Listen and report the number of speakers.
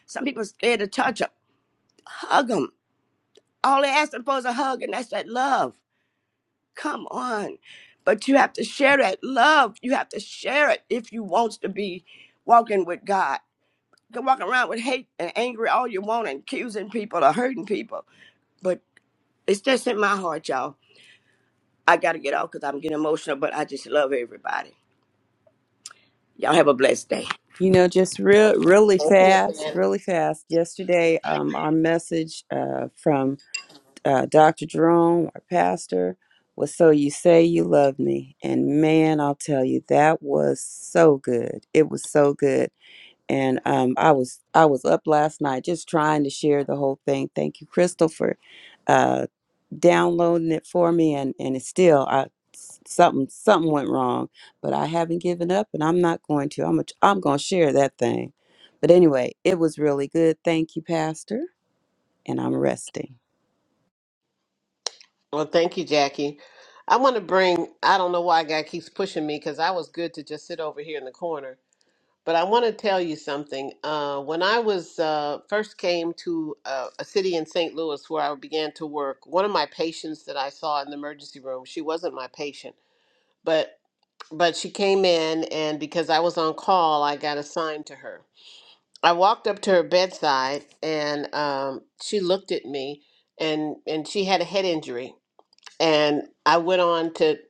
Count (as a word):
three